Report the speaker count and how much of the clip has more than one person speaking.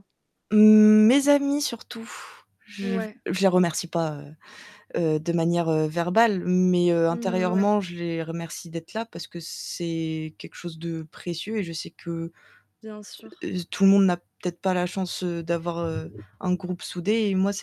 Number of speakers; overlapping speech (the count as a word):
two, about 5%